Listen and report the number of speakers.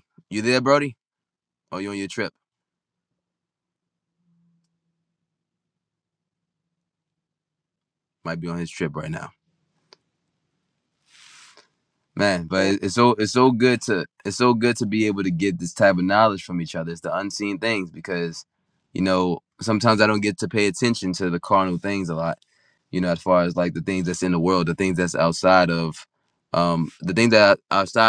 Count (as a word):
one